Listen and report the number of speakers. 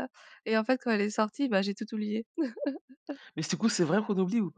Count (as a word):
two